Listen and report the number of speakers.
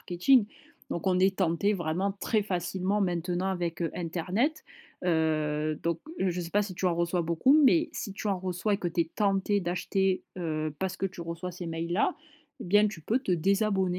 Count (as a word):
one